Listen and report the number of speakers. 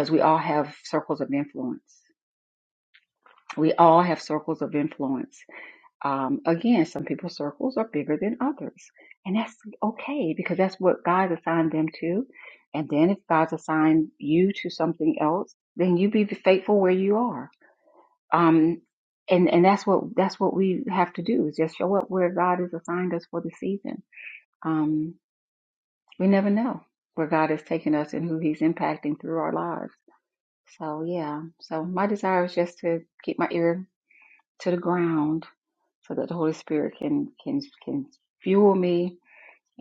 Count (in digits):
1